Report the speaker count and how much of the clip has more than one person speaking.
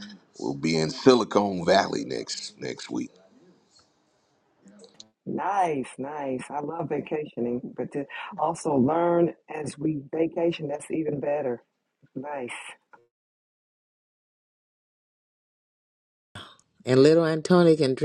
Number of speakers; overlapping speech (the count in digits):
3, no overlap